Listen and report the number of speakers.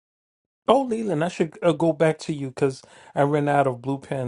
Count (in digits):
1